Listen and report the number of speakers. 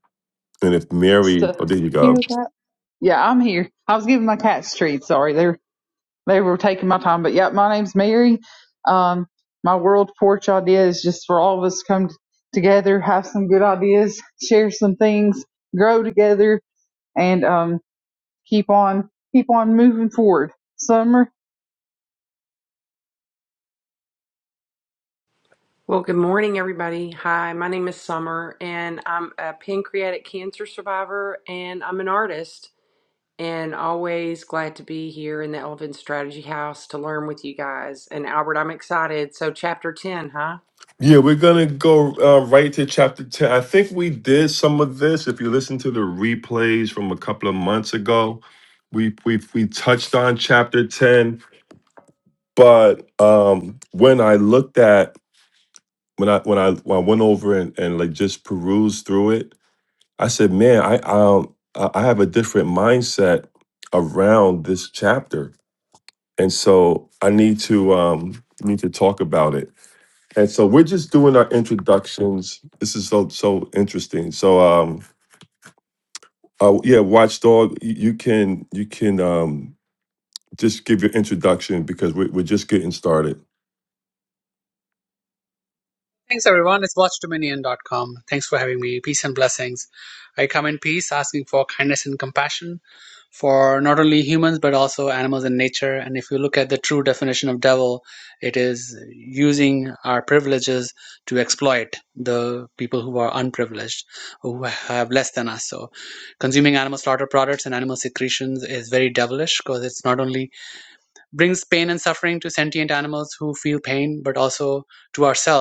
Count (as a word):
four